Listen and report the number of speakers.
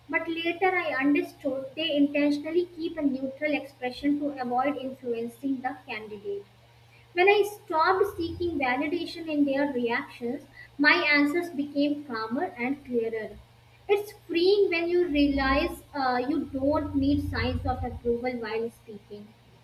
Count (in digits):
1